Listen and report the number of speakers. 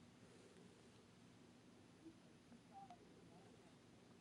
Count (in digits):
0